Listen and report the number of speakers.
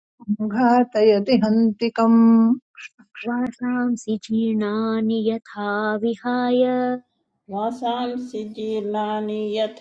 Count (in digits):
3